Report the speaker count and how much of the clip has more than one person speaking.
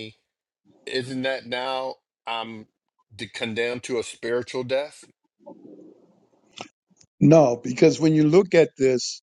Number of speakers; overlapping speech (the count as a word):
two, no overlap